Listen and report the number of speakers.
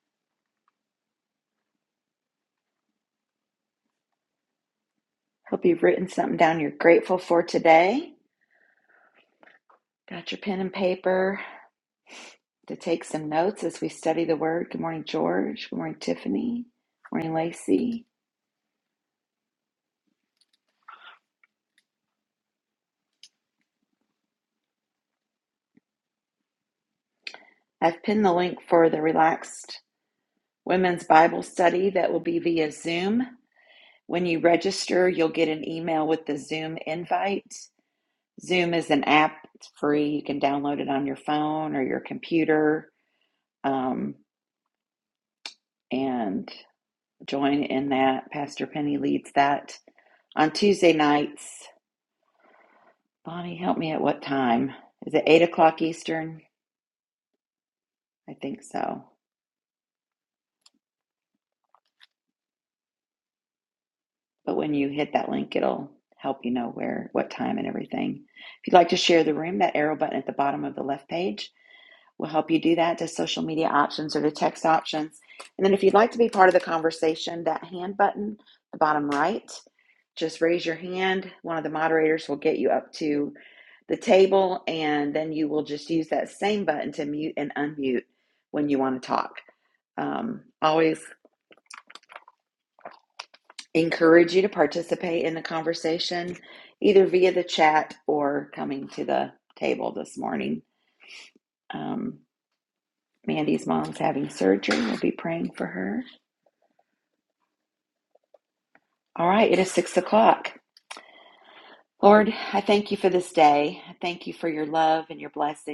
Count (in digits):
1